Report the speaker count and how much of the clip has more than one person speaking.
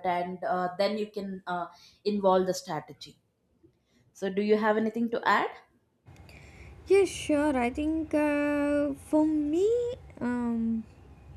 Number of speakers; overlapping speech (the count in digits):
2, no overlap